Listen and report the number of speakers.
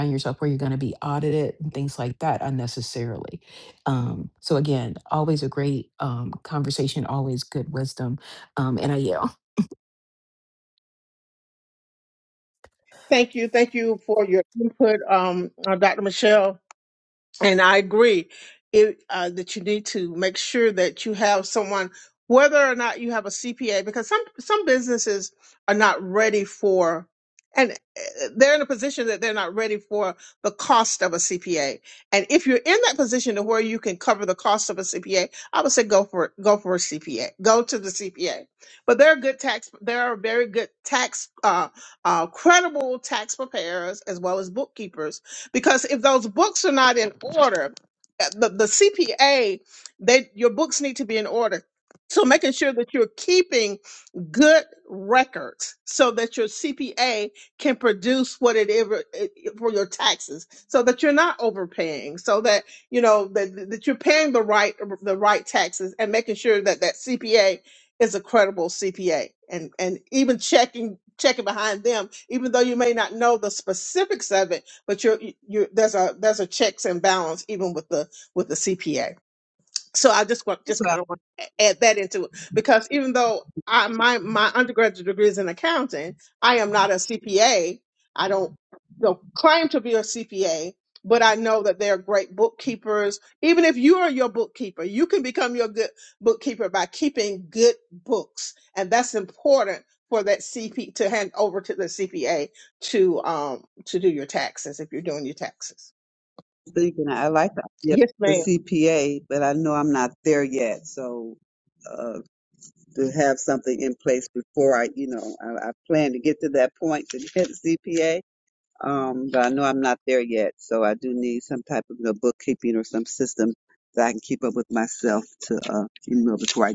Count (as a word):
three